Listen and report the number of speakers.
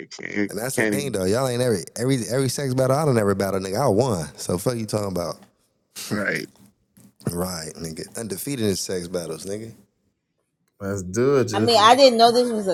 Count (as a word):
four